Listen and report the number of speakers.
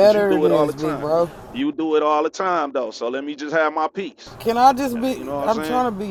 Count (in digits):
2